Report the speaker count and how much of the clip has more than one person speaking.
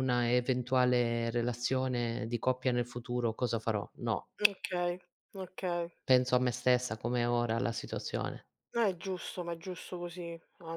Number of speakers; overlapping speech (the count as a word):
two, no overlap